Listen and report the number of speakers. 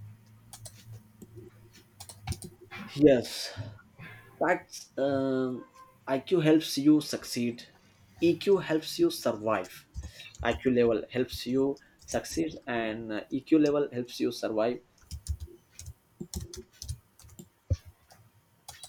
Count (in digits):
1